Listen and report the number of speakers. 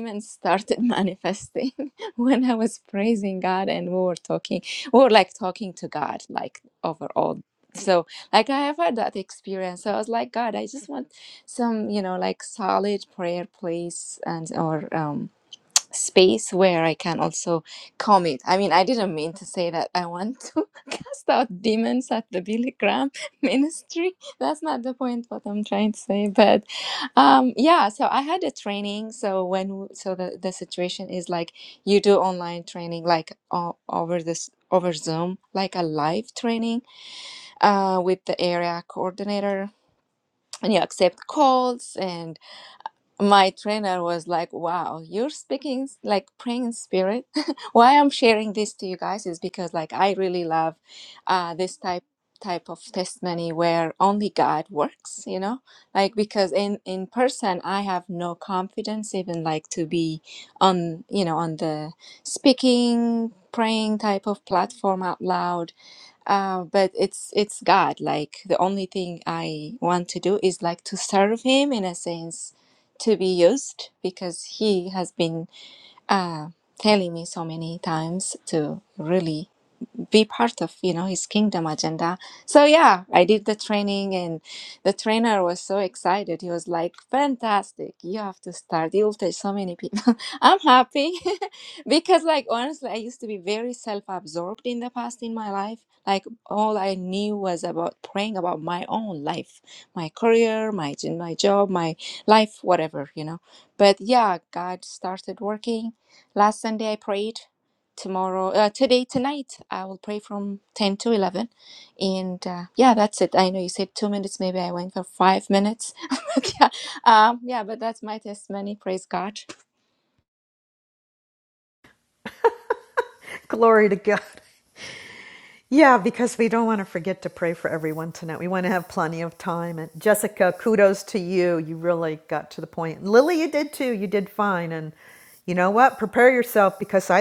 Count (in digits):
2